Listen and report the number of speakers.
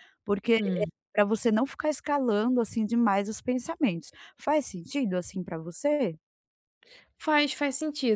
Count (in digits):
2